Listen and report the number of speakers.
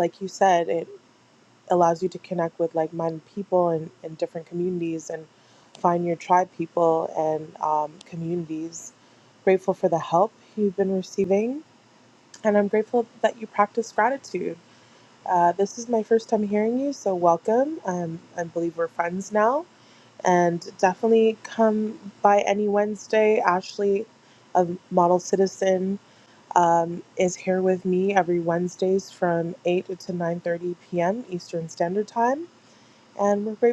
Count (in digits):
1